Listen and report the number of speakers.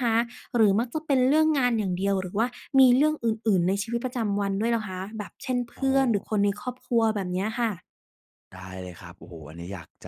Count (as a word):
two